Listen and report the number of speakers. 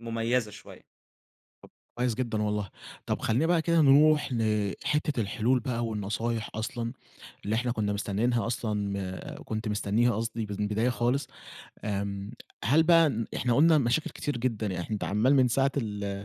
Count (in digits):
2